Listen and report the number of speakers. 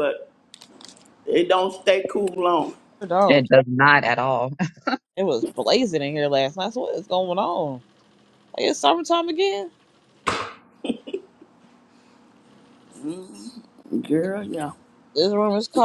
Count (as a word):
three